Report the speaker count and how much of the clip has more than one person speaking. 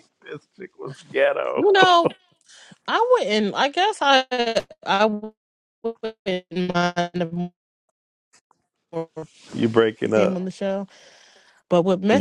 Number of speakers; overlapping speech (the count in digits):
2, about 4%